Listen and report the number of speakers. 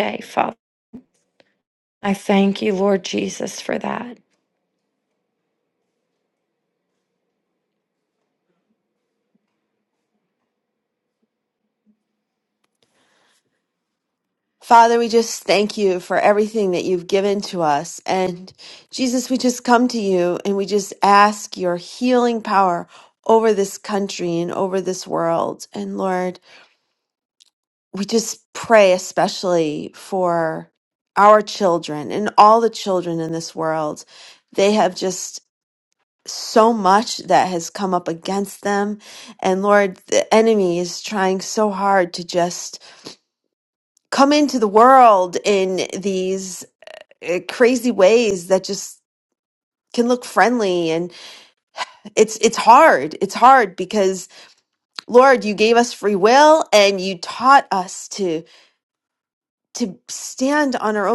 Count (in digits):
2